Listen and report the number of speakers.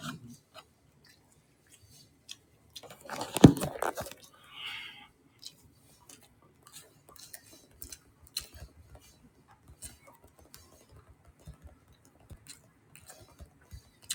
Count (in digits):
0